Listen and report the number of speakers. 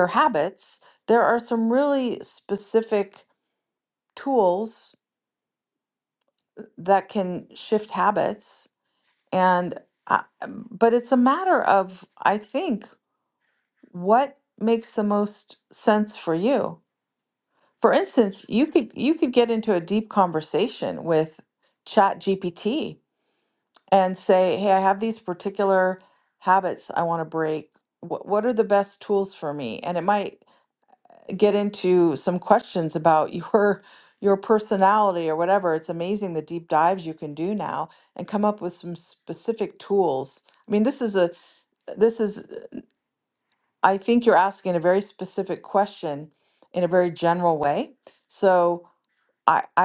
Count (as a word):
one